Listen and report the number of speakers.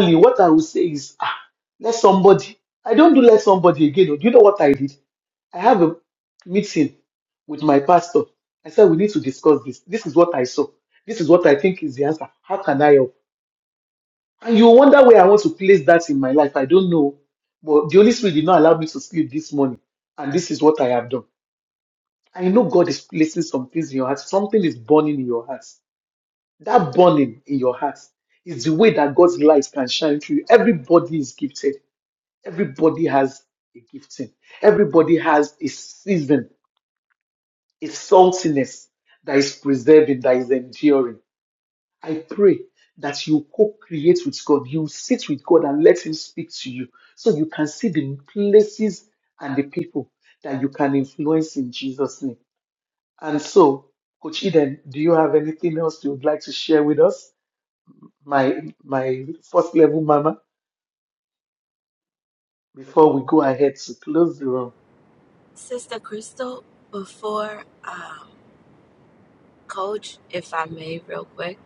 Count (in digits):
2